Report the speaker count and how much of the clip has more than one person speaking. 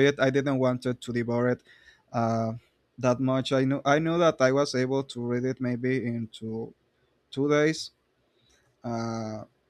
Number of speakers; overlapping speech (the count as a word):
one, no overlap